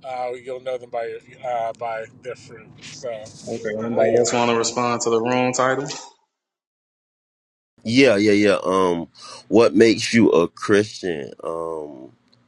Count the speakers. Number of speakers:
3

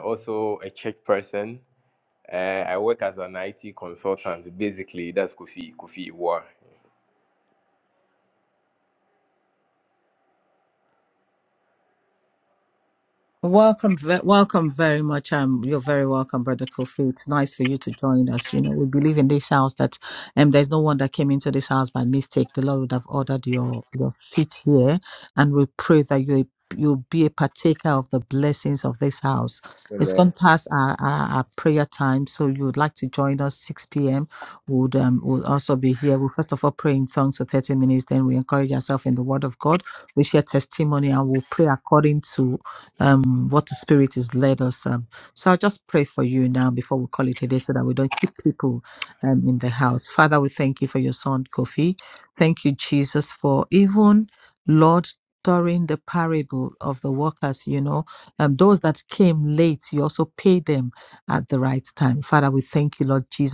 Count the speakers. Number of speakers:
2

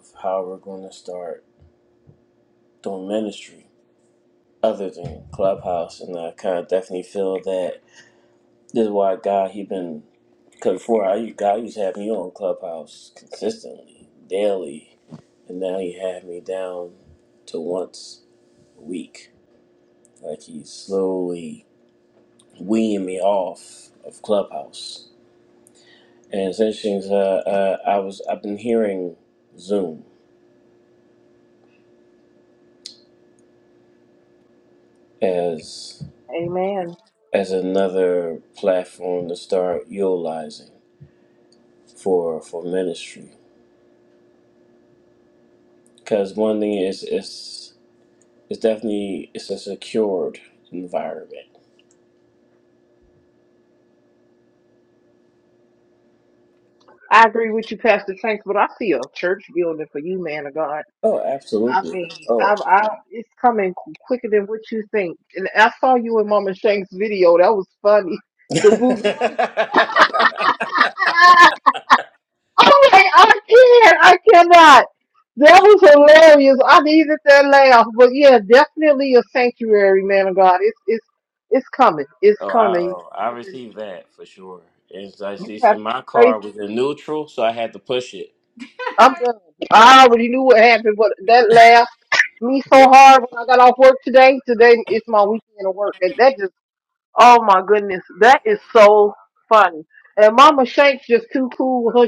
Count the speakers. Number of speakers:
2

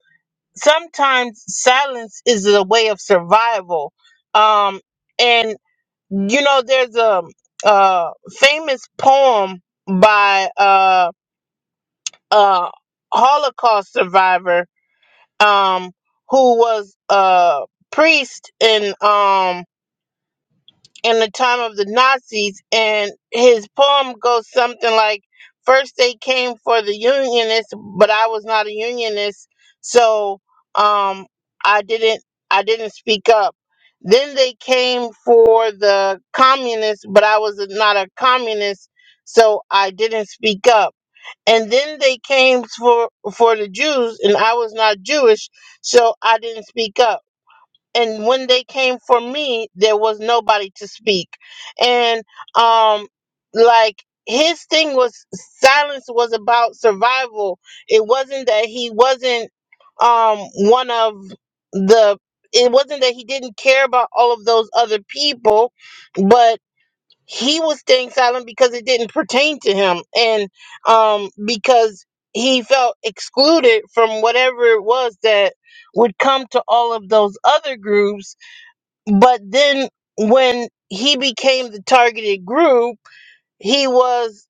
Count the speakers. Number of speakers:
1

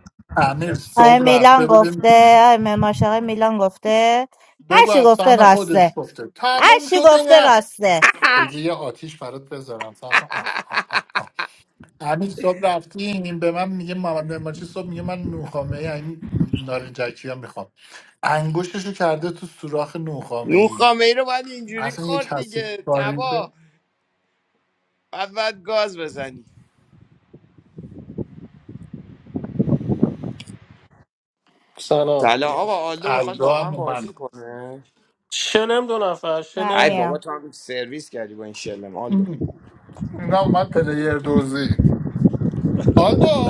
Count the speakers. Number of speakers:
4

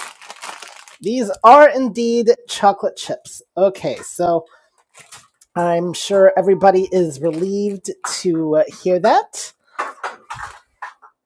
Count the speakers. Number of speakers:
1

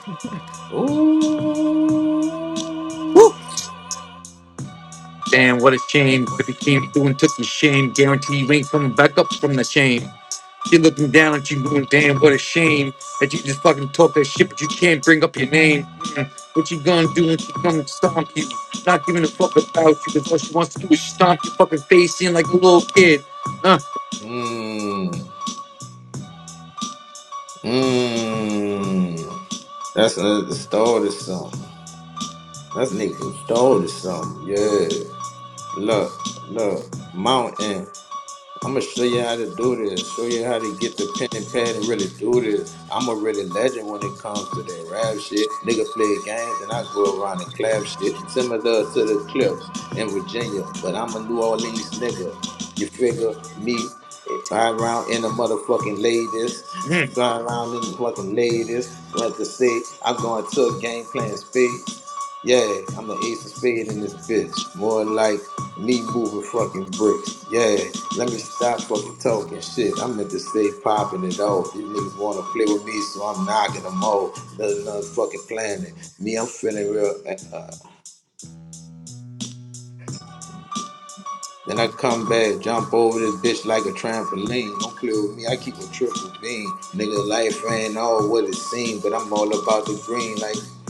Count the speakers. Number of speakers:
2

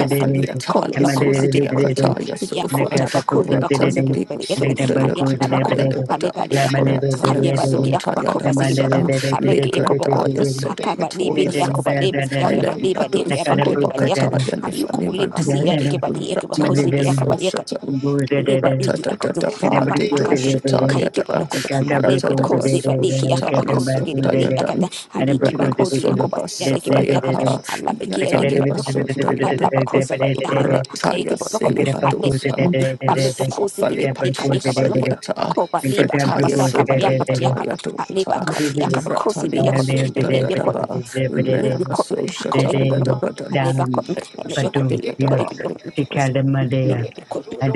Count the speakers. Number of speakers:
3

